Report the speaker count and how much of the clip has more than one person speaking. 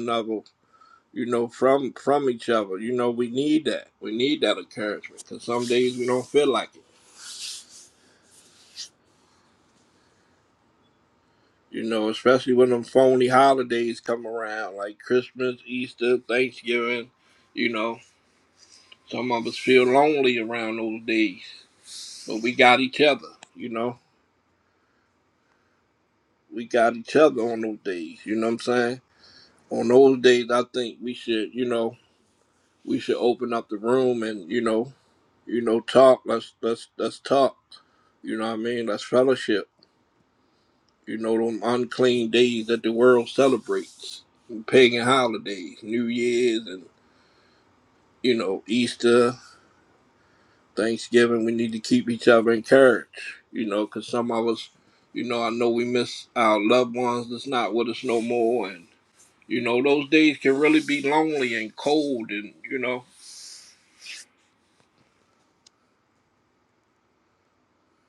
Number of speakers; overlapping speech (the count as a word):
one, no overlap